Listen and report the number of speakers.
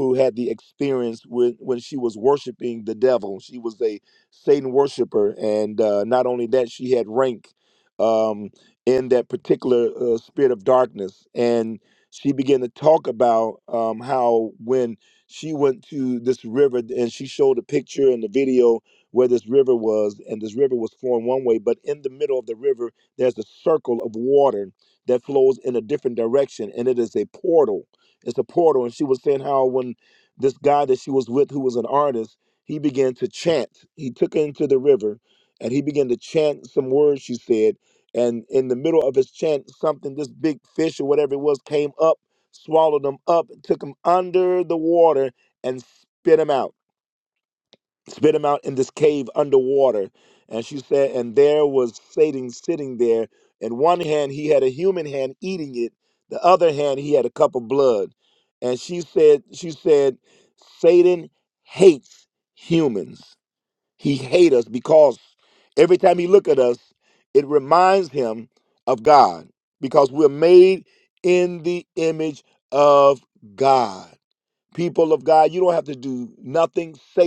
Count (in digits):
1